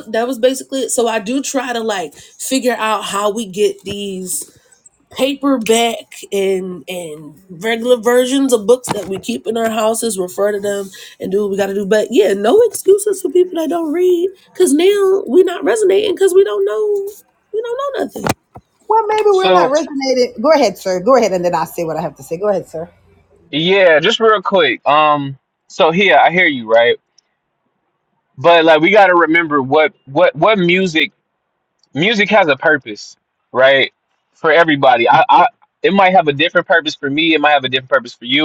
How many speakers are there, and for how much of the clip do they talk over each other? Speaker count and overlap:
three, about 1%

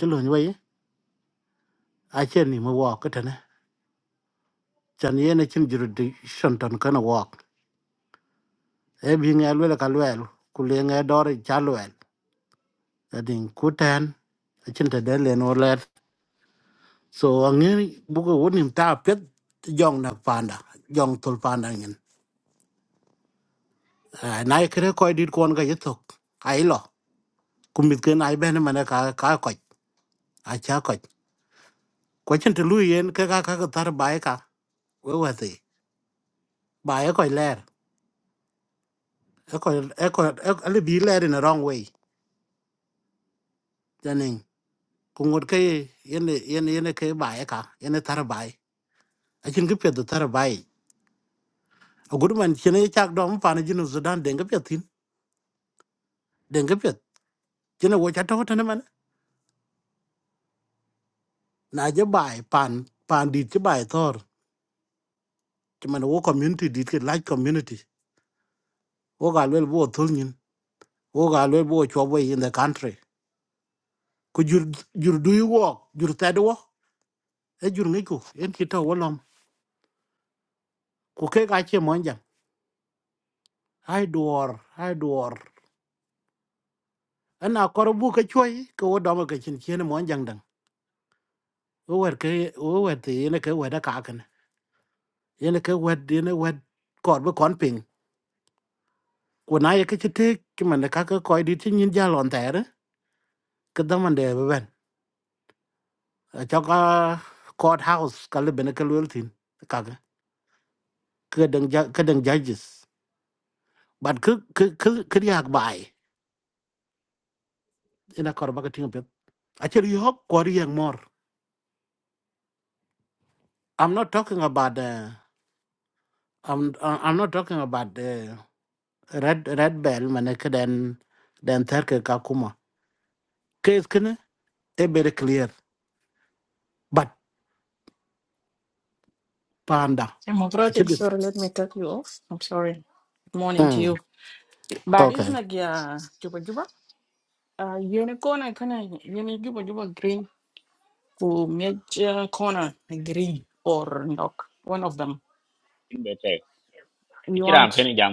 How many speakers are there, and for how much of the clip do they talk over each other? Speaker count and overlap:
three, about 1%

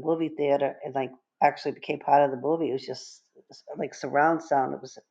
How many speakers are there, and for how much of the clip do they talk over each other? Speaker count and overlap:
one, no overlap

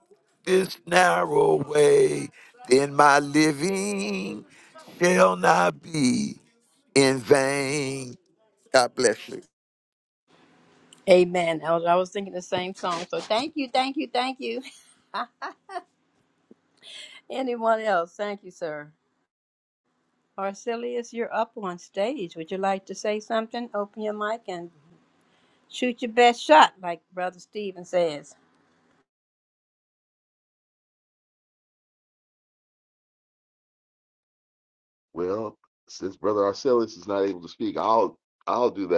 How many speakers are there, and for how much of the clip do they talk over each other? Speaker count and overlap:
three, no overlap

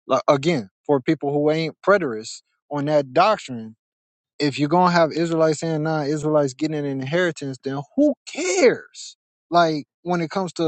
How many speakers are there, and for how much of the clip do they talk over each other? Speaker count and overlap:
one, no overlap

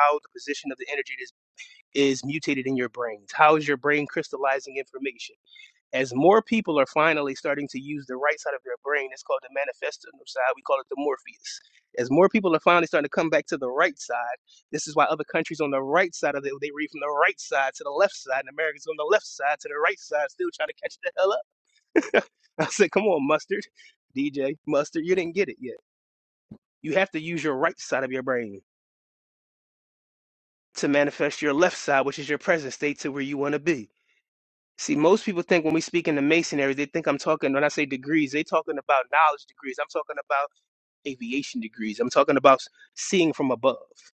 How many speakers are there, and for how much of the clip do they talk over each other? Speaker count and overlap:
one, no overlap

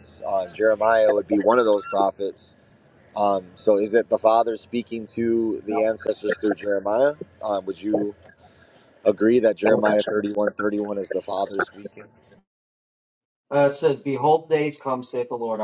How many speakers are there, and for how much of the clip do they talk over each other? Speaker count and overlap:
two, about 2%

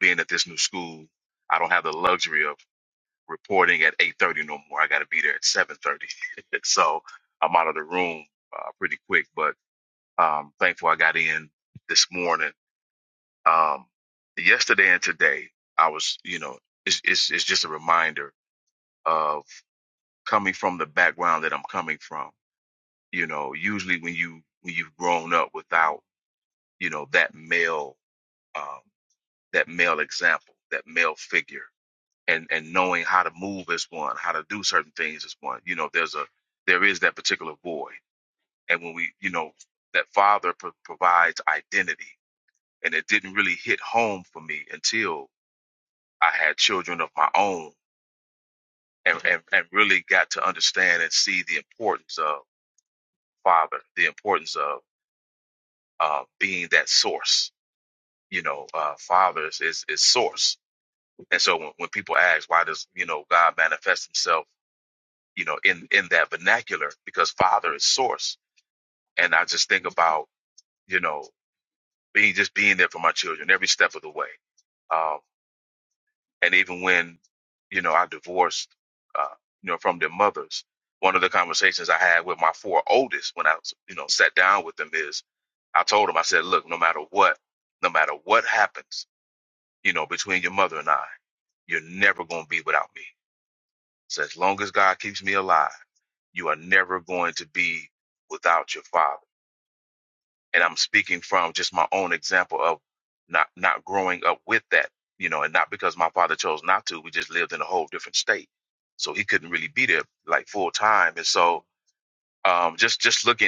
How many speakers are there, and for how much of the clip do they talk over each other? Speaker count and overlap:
one, no overlap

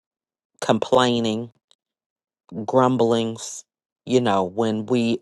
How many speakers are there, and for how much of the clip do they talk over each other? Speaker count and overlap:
one, no overlap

